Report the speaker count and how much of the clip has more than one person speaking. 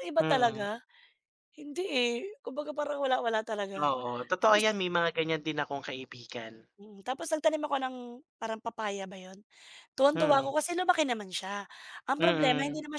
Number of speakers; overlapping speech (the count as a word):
two, about 13%